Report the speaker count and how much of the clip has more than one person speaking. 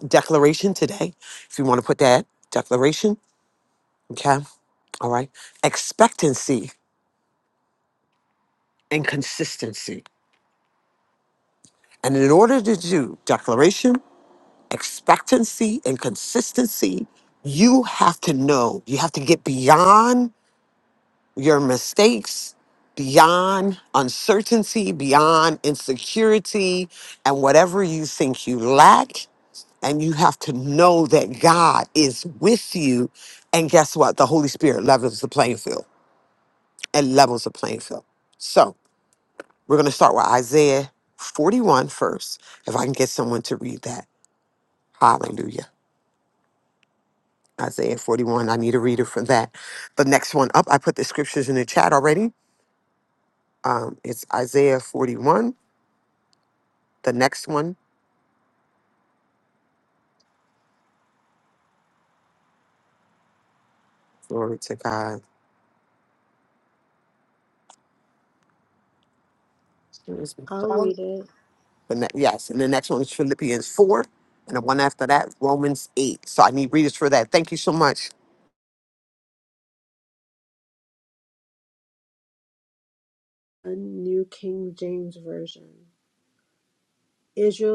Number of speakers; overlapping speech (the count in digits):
2, about 1%